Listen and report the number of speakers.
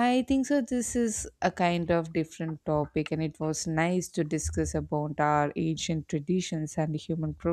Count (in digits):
1